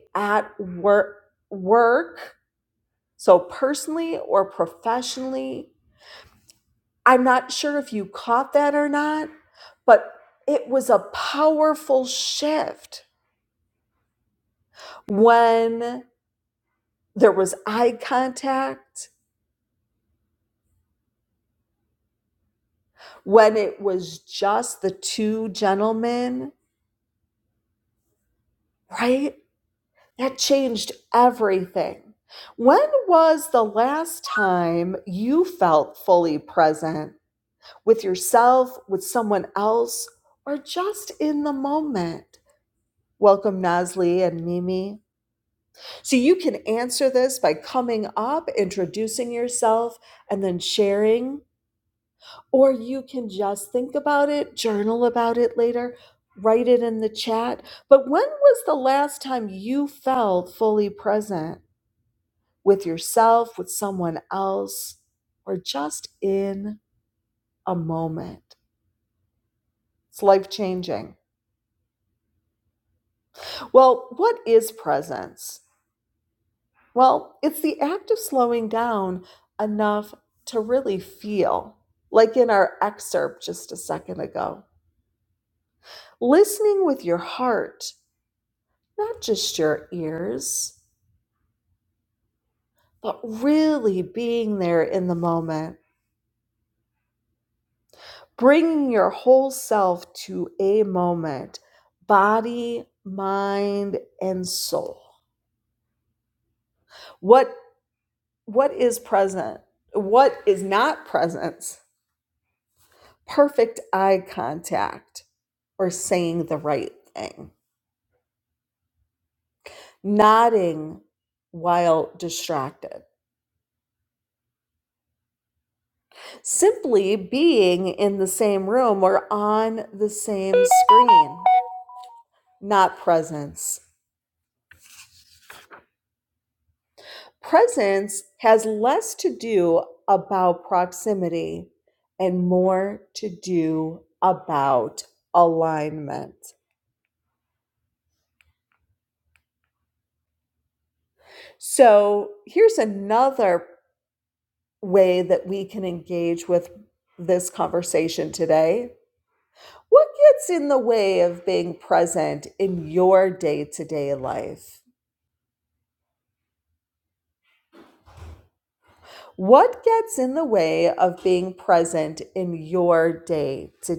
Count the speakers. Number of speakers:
1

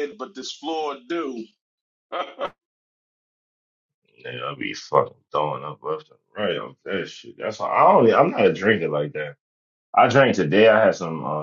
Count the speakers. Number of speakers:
2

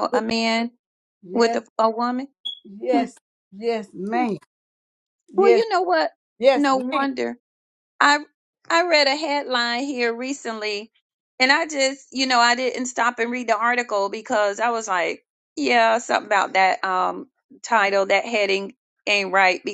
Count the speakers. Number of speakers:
2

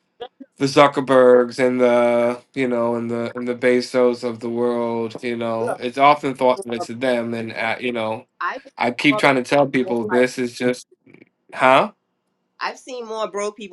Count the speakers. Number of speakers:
2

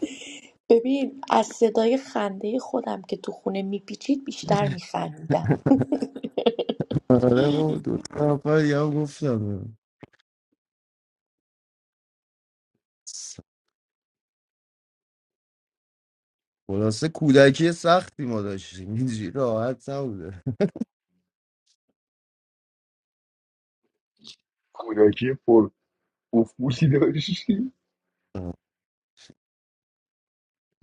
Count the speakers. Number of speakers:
3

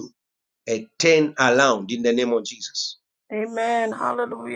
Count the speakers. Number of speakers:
2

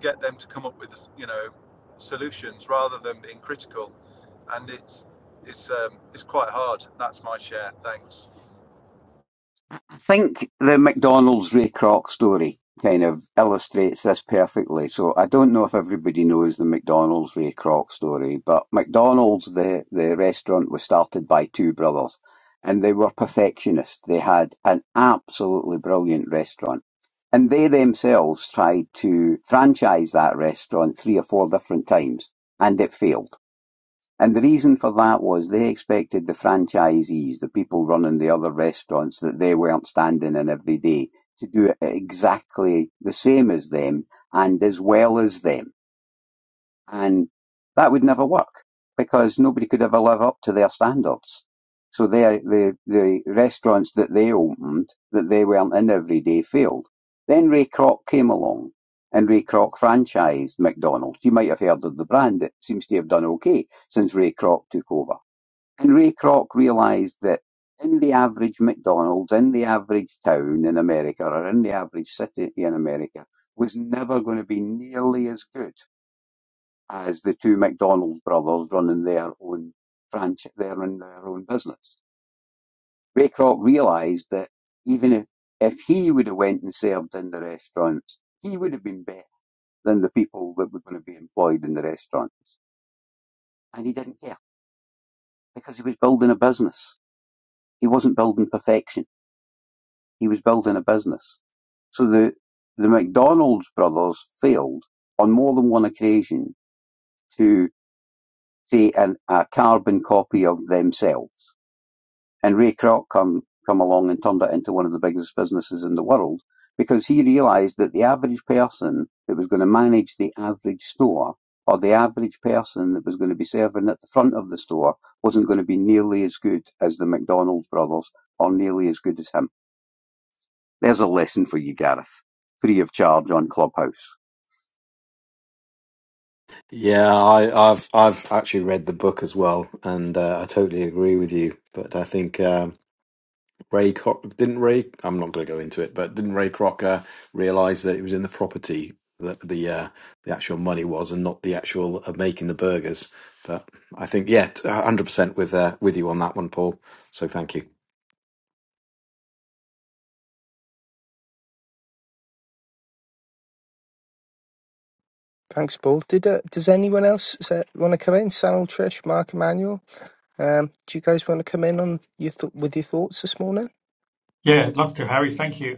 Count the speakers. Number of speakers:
5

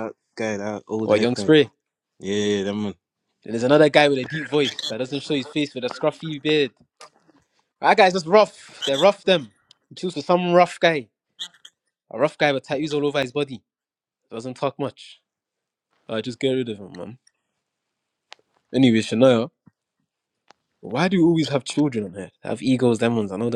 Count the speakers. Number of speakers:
2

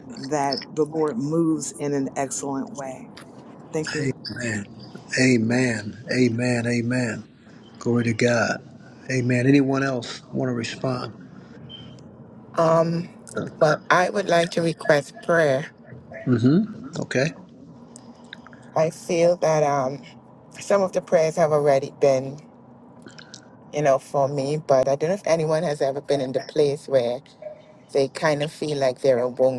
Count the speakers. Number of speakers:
3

